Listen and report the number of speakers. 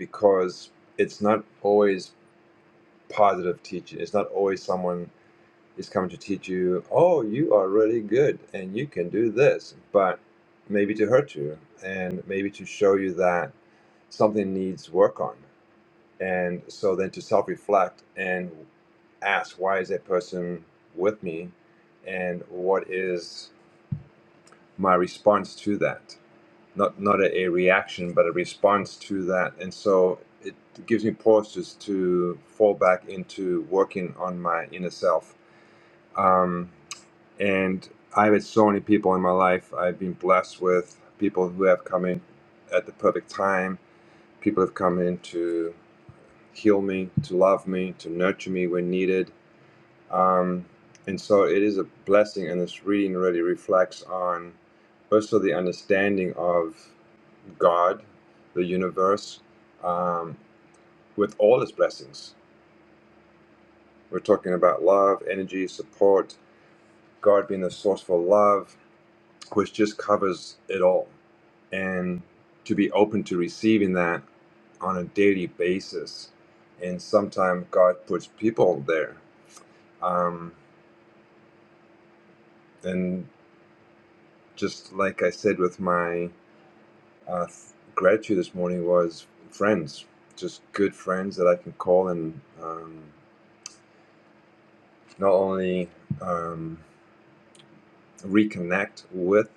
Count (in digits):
1